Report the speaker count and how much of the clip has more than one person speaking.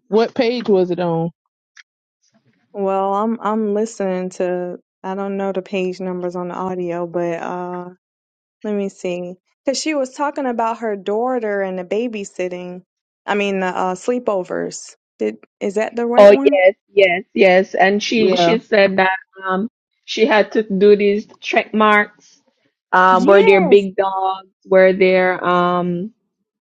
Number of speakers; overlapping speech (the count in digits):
3, about 6%